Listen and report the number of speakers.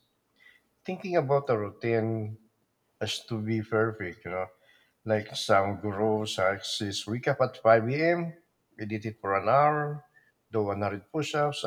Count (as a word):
one